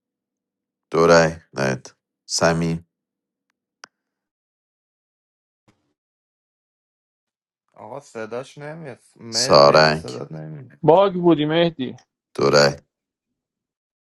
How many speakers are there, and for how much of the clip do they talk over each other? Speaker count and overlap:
3, about 5%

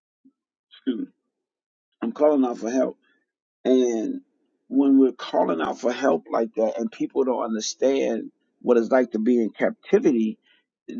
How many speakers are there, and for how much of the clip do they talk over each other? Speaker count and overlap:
1, no overlap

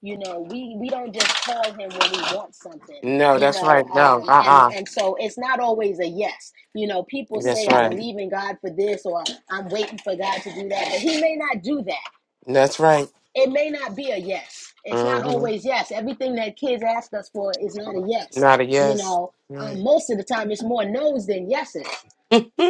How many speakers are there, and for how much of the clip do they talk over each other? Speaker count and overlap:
2, about 13%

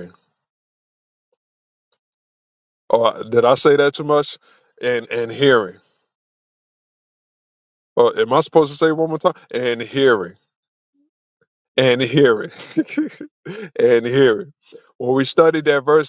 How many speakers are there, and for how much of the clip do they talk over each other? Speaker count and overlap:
1, no overlap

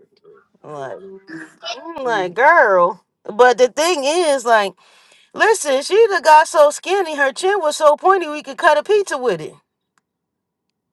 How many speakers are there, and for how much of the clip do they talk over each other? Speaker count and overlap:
1, no overlap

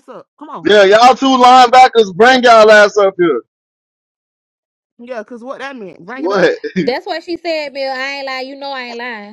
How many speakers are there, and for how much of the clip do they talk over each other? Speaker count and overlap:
3, about 3%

